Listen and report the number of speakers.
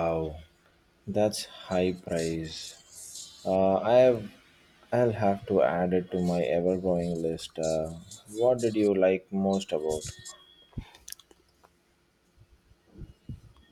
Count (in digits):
1